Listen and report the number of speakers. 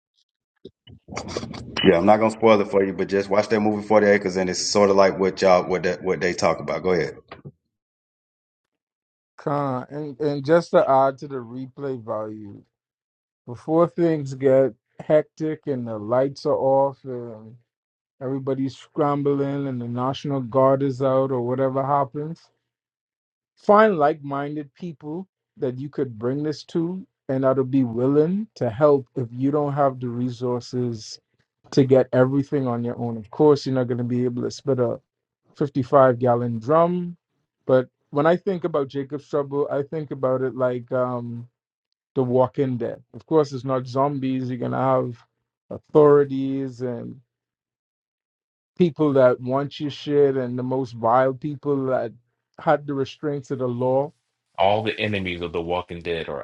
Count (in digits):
3